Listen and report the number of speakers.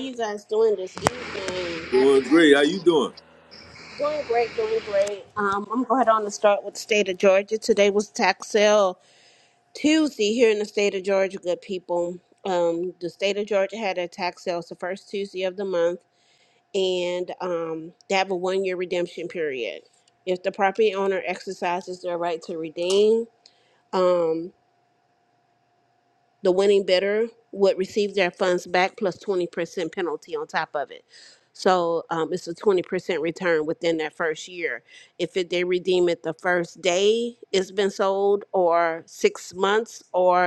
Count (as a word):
two